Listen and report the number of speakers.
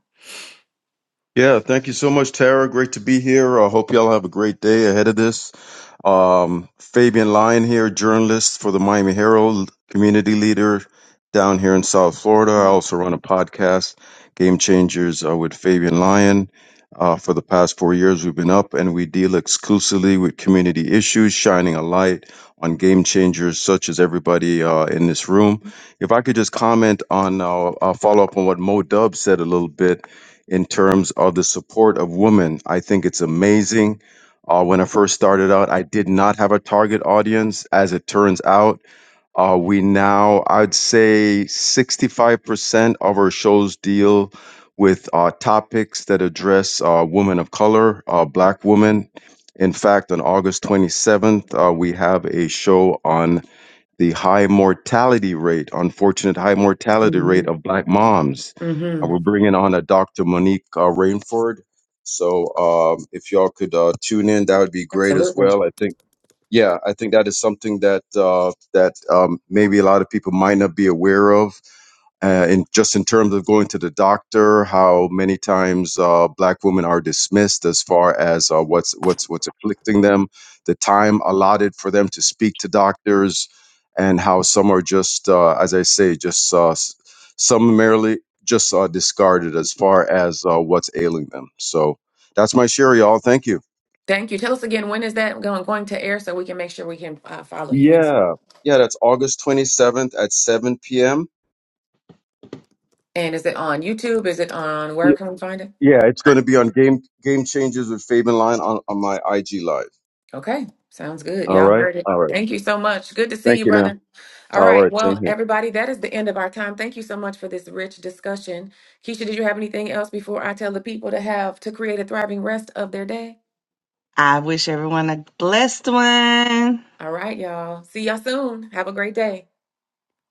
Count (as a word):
three